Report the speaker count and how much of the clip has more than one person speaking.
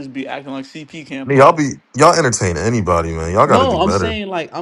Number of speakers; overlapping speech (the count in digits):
3, about 21%